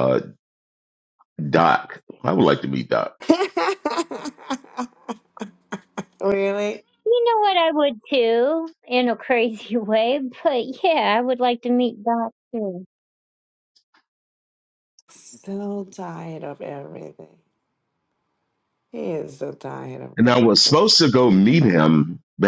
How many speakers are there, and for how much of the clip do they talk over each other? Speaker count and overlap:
three, no overlap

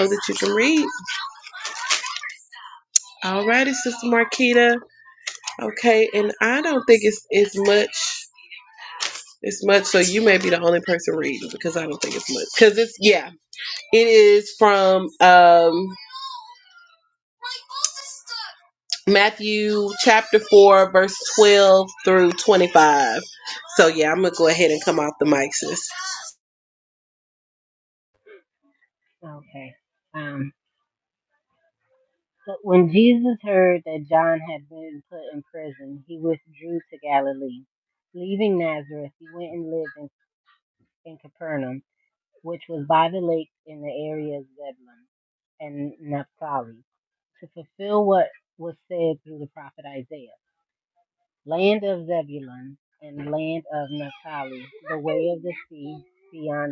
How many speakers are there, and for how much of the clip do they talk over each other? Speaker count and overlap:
two, no overlap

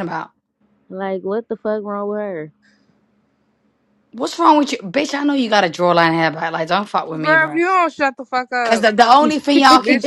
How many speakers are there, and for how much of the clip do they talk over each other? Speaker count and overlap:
three, about 9%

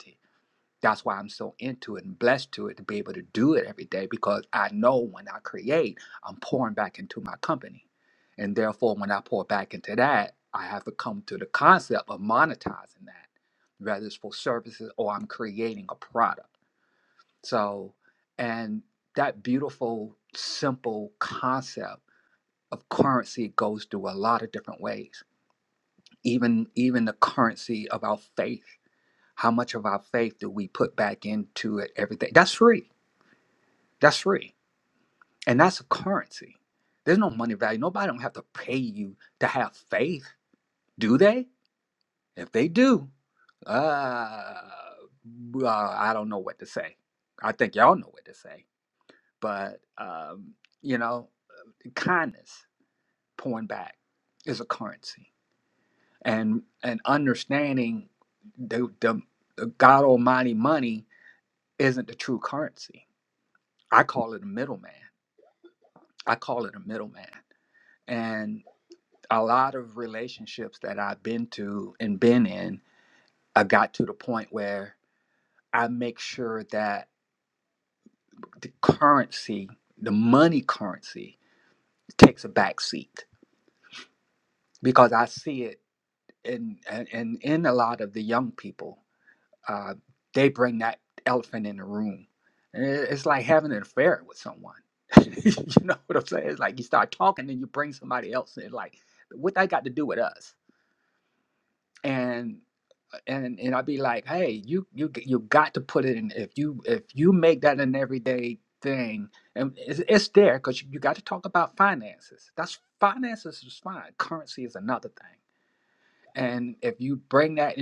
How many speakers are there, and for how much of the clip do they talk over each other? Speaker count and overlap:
one, no overlap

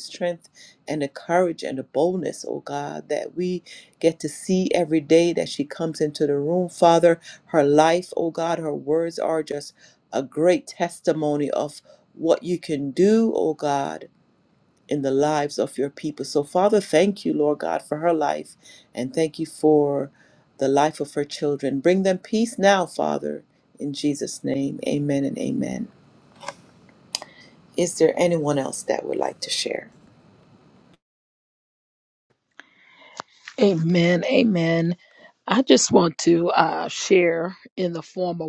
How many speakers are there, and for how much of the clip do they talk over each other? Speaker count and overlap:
two, no overlap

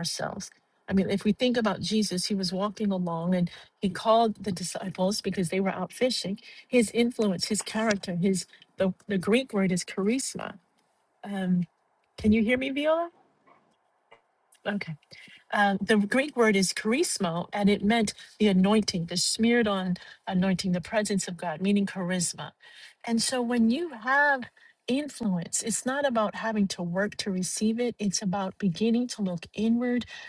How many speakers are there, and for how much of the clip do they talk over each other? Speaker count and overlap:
one, no overlap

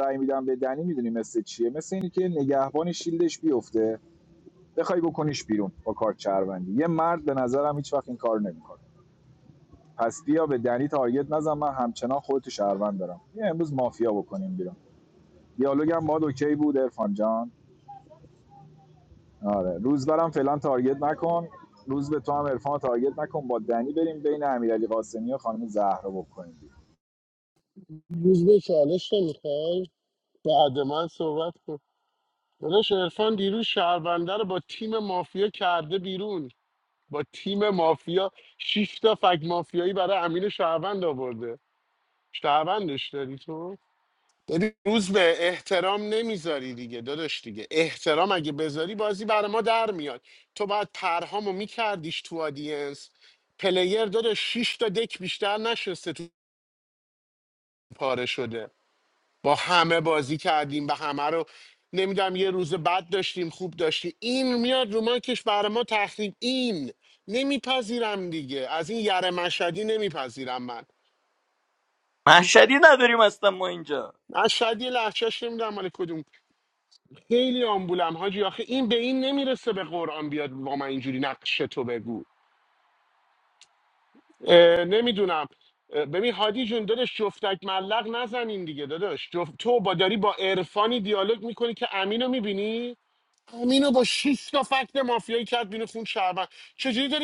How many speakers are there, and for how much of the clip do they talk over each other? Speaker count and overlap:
three, no overlap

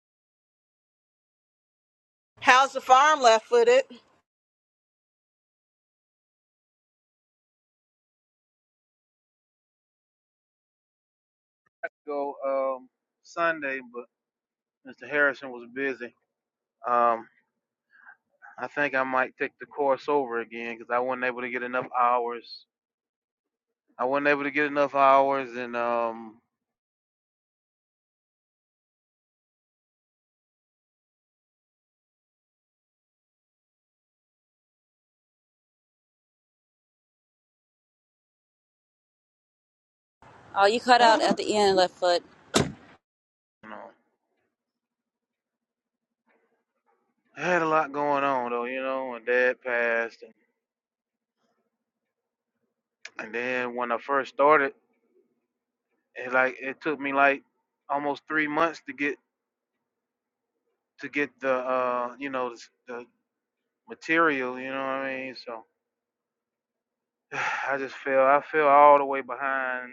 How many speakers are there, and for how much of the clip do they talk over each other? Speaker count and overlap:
three, no overlap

